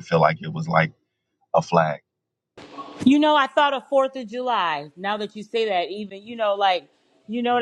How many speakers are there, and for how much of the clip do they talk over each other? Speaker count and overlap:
two, no overlap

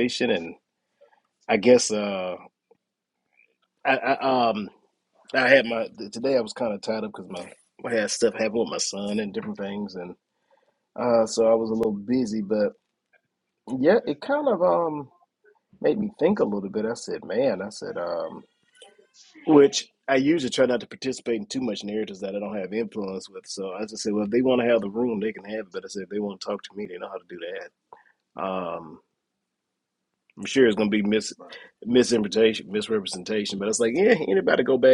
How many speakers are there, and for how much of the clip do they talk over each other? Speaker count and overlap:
one, no overlap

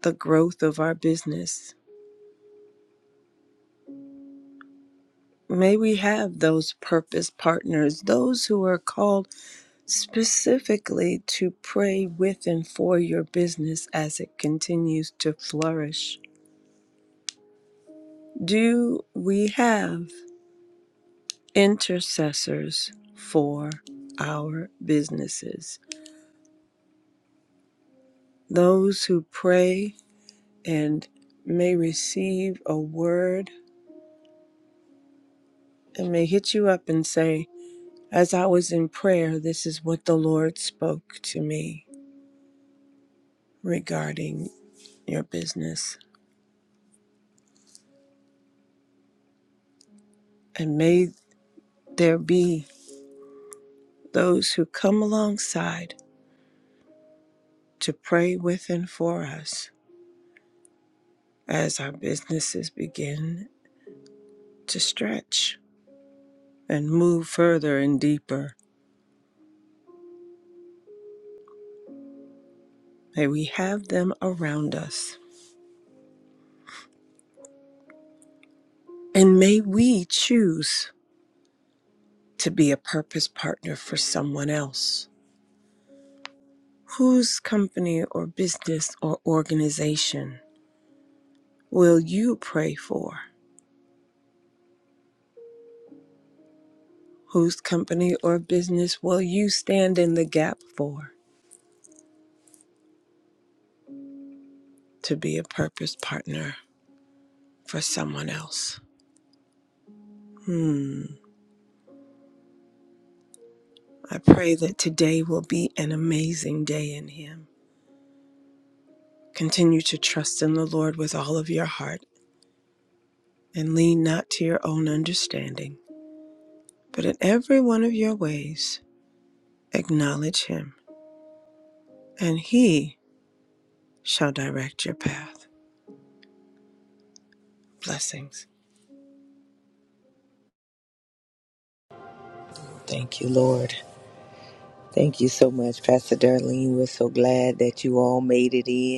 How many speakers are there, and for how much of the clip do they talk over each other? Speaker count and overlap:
two, no overlap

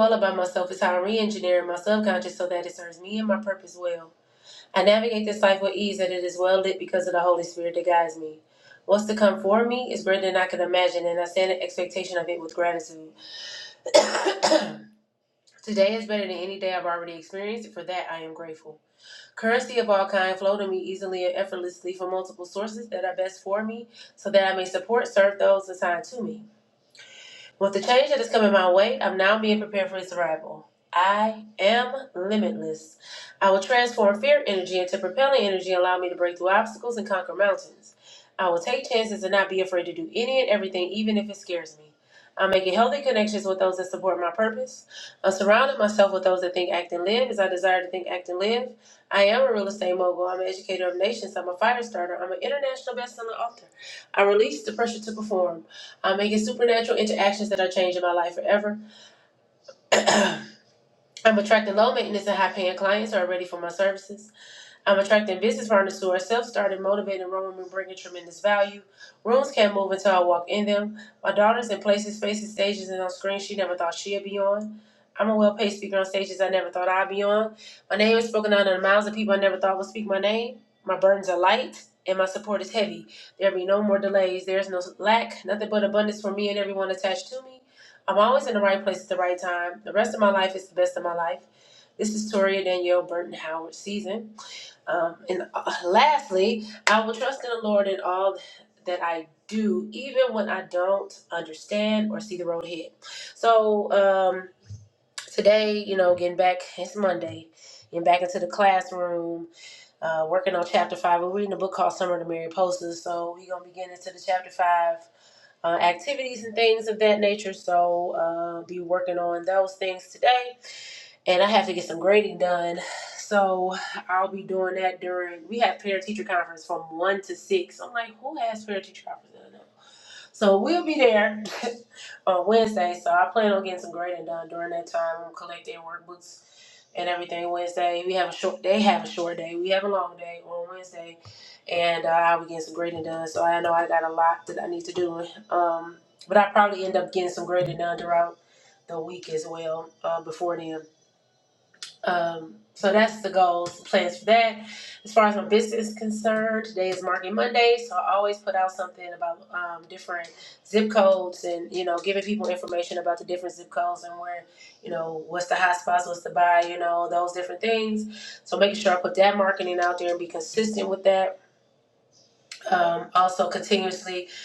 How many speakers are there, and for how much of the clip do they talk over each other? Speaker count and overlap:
one, no overlap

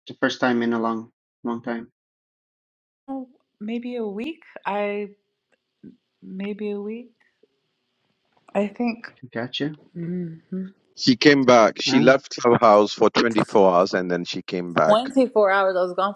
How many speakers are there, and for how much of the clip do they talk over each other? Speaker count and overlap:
three, about 2%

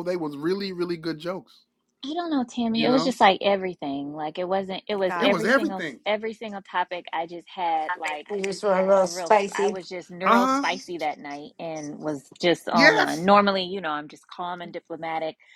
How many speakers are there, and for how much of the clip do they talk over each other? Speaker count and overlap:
three, about 19%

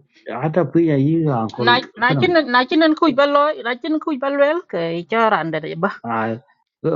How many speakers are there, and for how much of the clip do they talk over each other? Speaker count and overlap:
two, about 4%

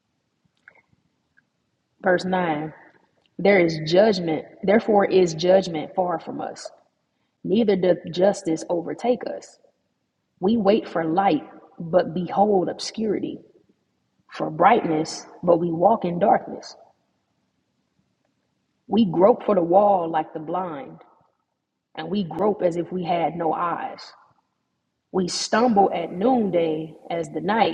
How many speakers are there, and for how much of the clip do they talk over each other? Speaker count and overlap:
one, no overlap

